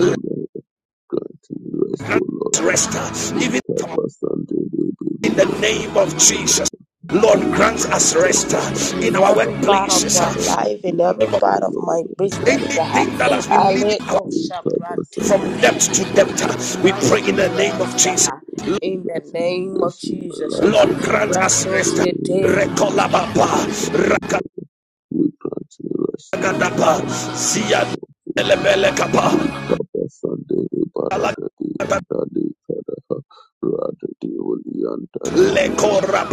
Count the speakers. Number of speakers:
3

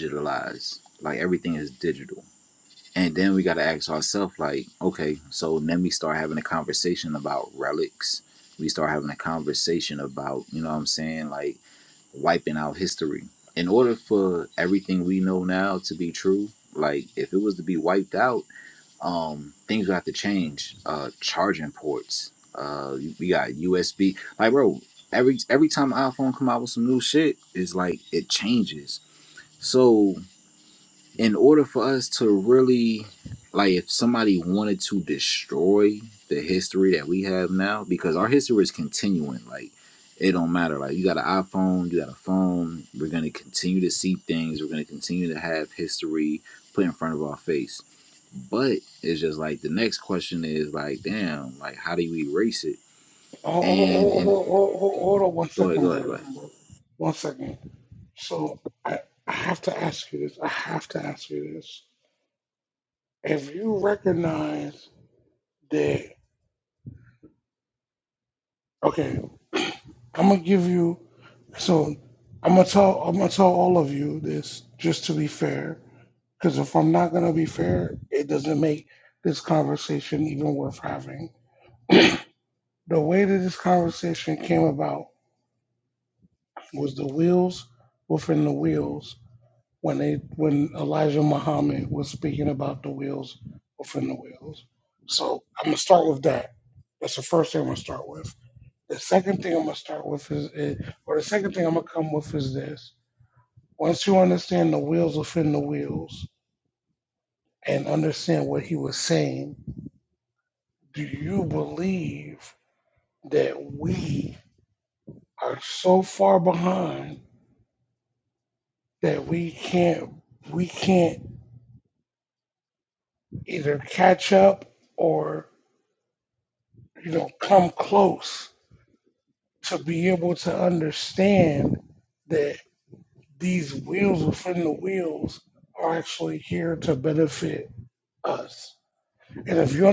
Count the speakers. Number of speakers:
2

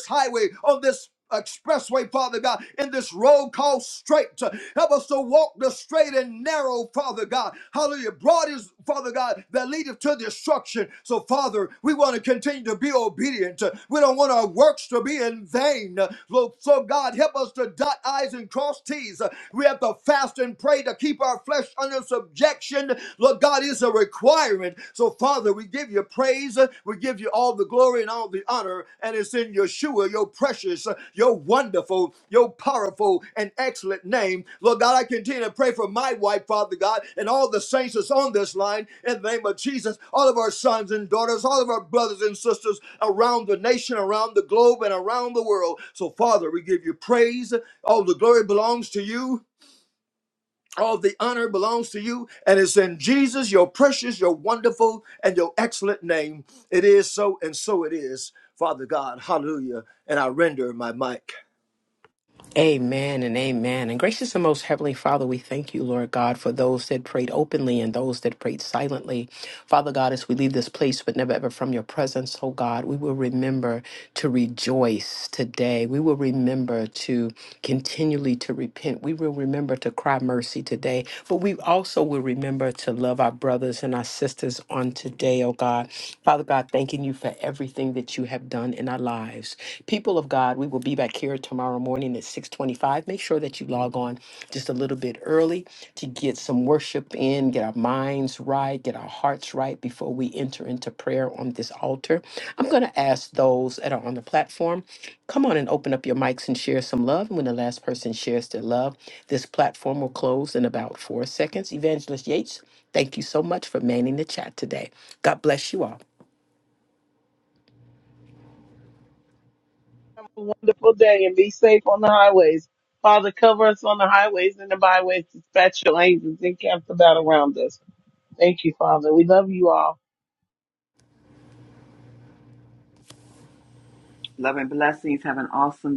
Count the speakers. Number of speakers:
4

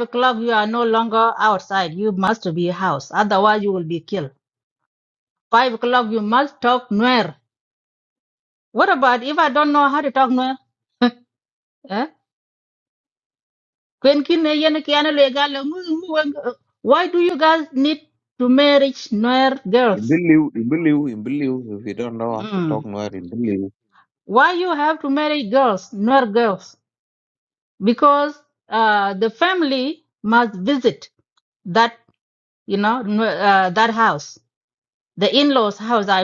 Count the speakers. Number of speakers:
2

